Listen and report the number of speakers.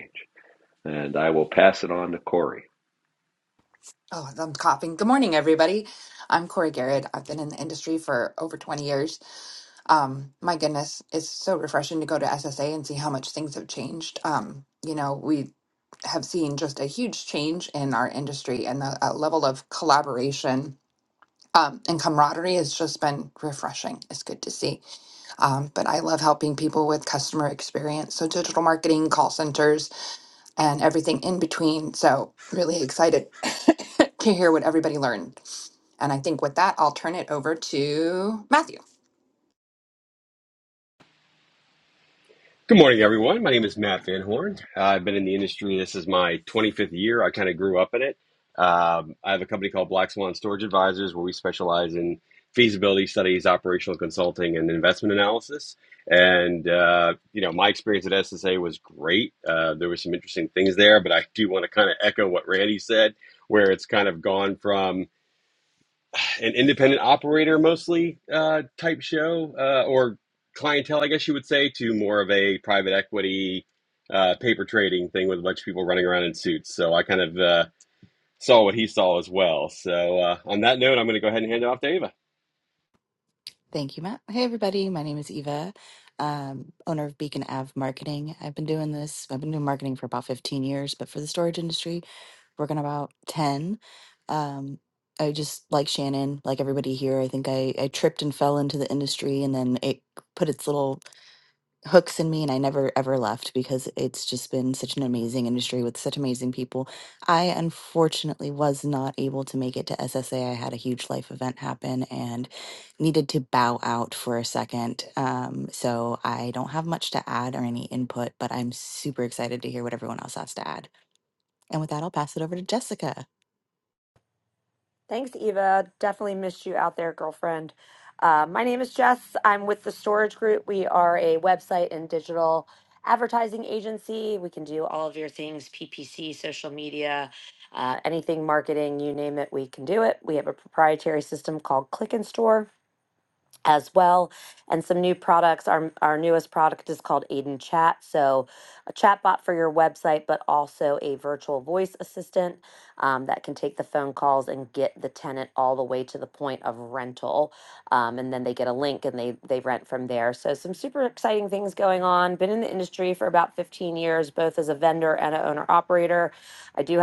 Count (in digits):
5